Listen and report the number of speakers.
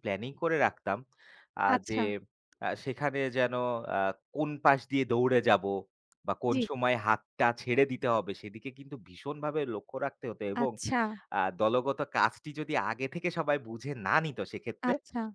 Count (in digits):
2